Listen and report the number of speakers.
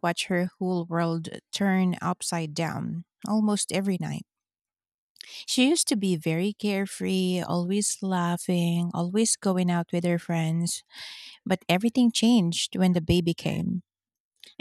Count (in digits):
1